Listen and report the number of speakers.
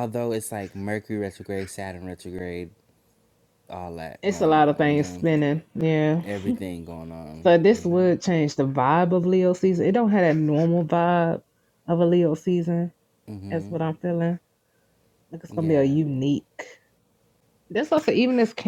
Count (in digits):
2